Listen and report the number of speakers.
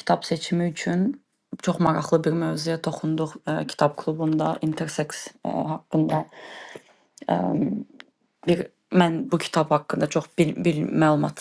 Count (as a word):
one